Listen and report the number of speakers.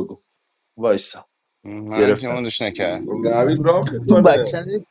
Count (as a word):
three